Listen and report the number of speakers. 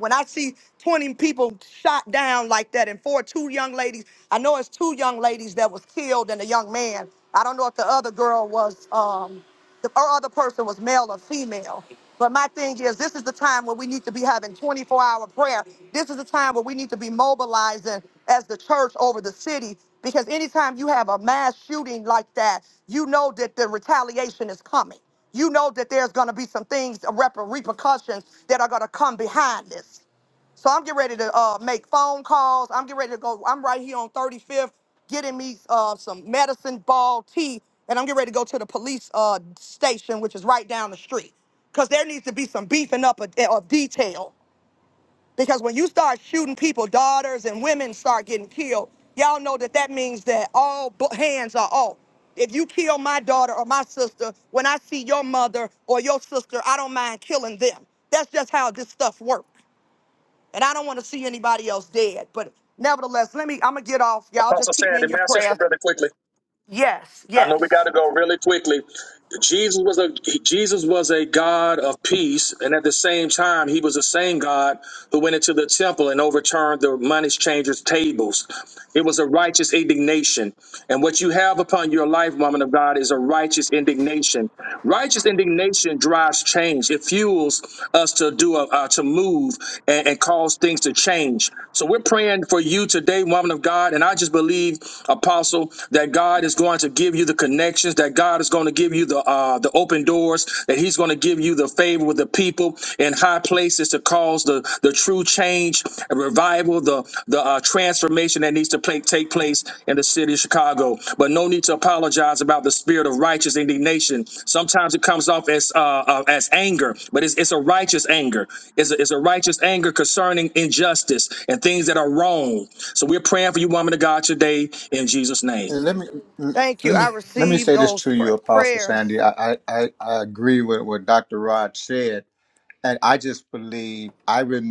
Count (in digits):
3